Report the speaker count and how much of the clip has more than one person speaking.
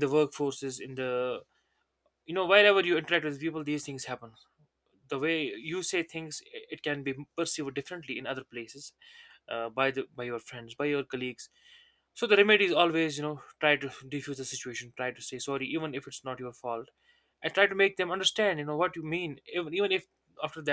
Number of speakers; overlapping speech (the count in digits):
1, no overlap